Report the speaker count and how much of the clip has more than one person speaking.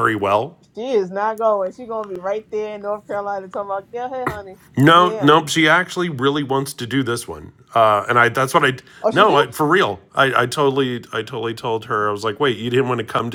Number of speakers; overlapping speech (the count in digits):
2, about 5%